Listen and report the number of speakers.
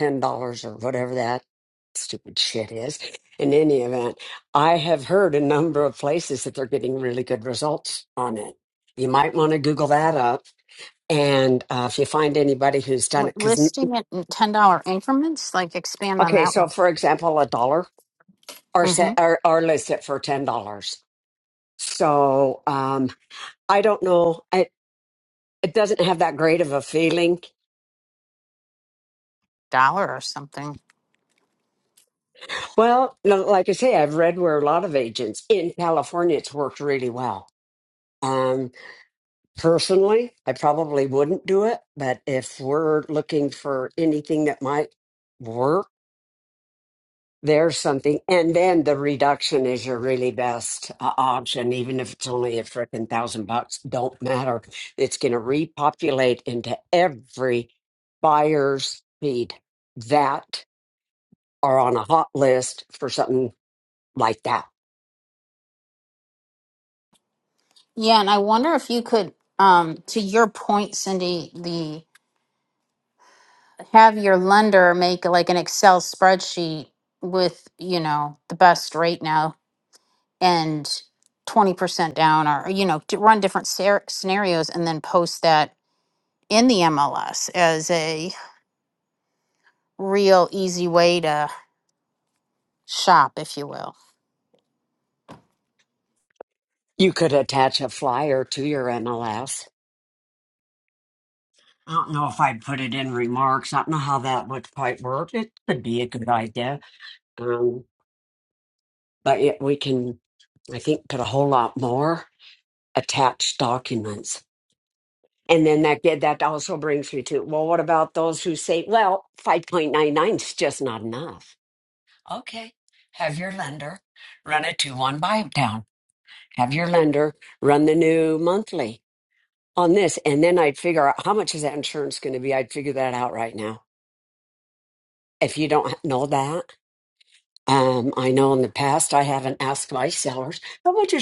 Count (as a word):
two